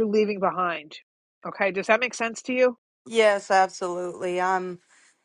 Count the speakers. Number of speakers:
2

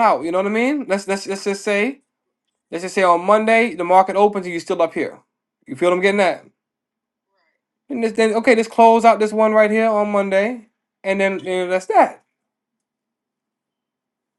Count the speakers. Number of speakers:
1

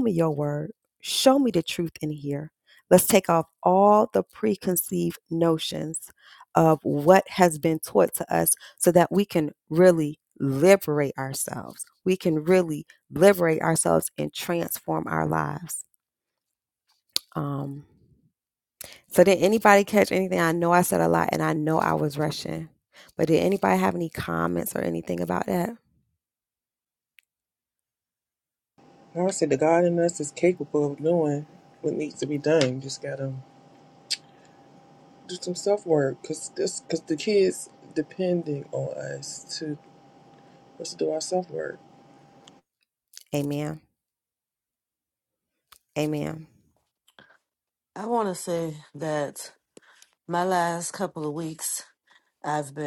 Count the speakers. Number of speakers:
3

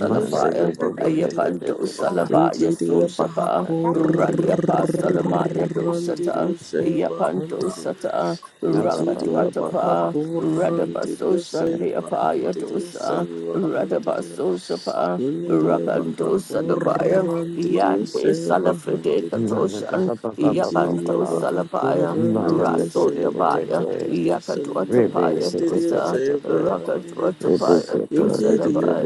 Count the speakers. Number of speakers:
3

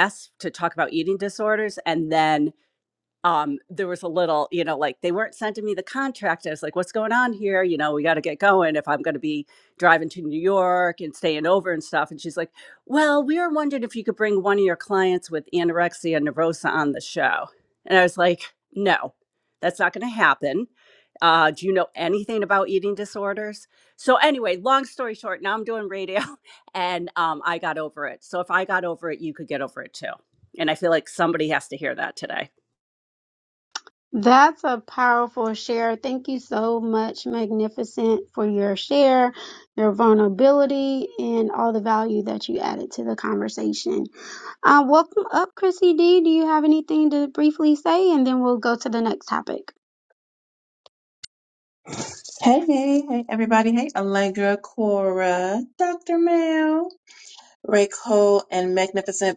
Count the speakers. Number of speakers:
3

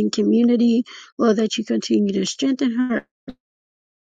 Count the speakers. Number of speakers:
1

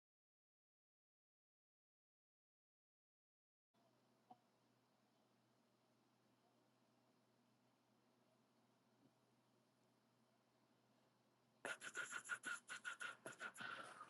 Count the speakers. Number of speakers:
0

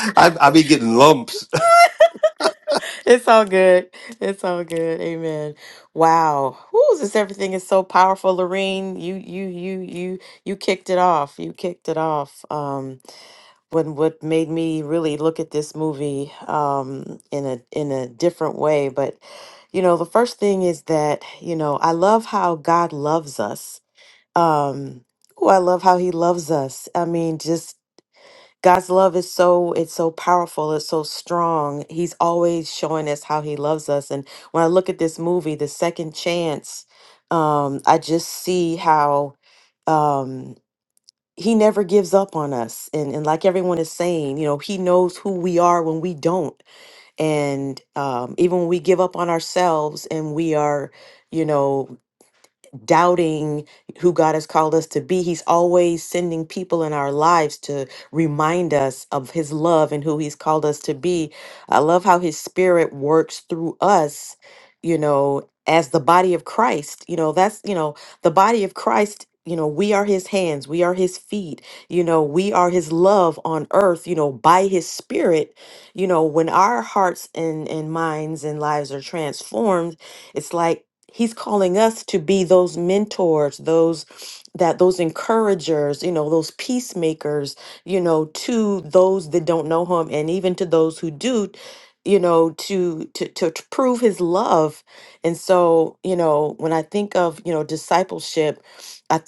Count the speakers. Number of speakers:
2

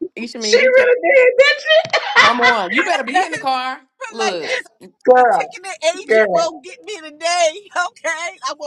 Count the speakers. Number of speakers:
3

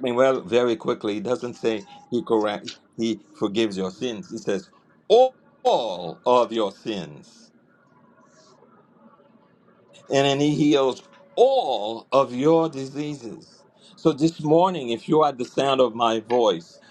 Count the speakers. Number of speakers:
1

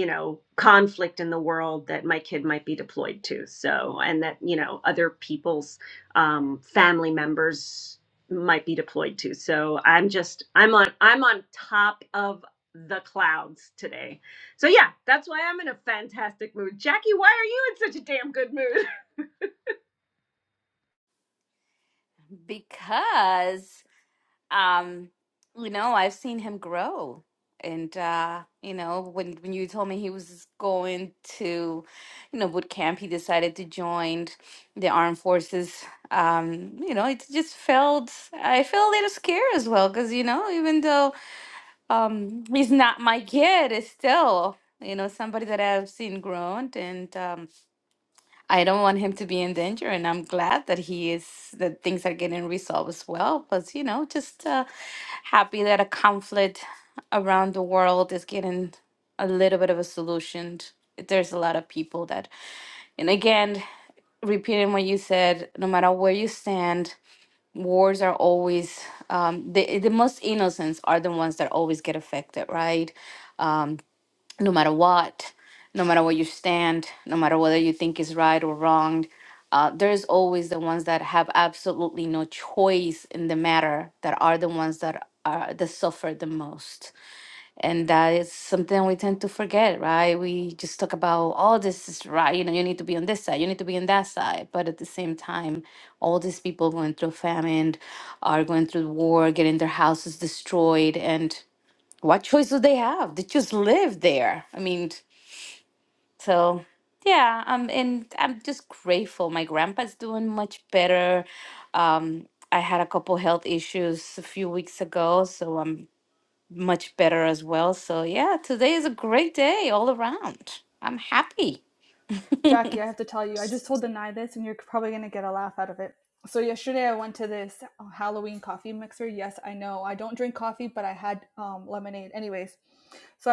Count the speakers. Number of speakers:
3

